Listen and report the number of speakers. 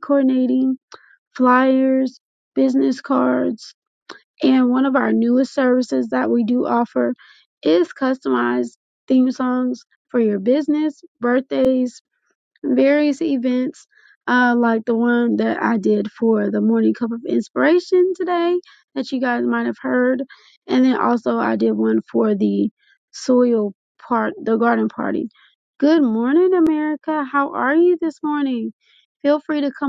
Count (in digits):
1